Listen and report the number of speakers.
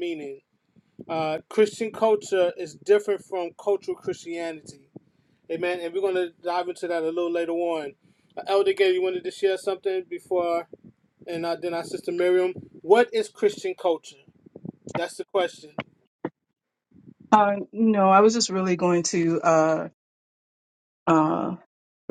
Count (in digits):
2